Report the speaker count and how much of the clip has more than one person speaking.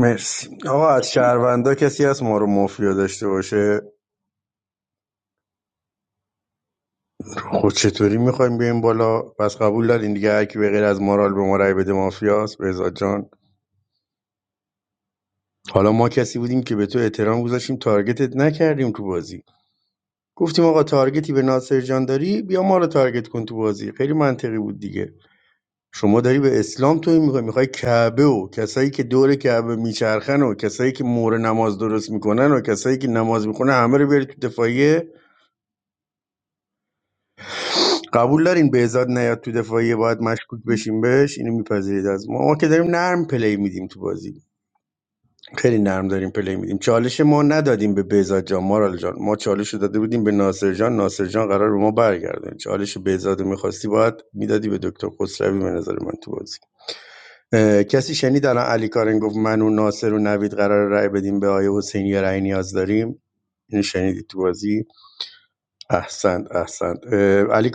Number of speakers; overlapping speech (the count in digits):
1, no overlap